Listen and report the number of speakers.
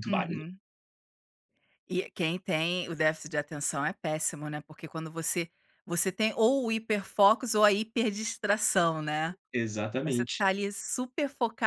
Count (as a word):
two